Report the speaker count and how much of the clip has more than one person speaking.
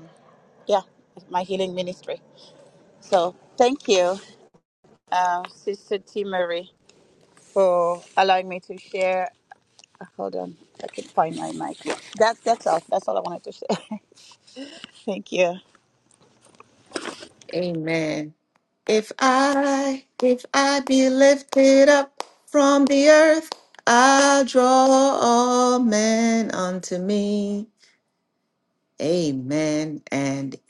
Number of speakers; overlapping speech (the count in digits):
2, no overlap